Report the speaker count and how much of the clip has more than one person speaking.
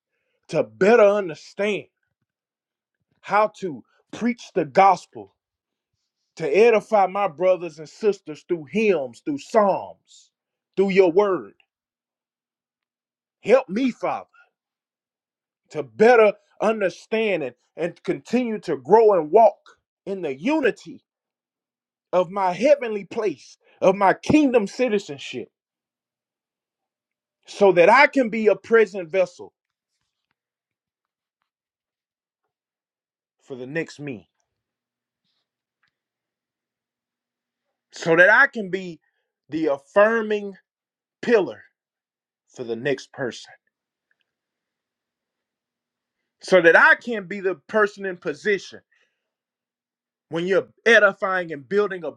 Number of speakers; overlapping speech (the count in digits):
1, no overlap